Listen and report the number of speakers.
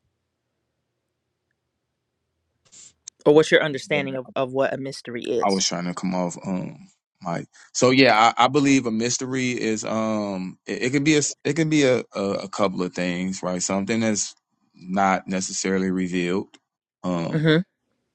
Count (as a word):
two